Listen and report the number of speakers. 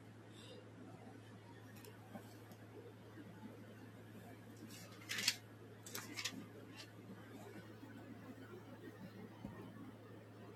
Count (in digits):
0